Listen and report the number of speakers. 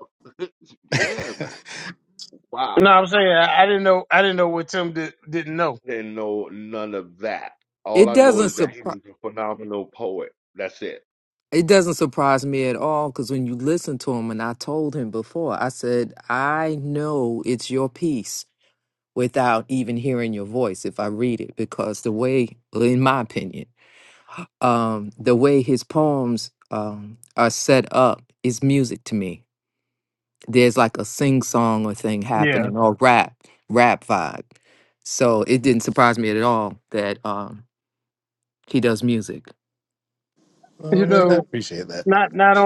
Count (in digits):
4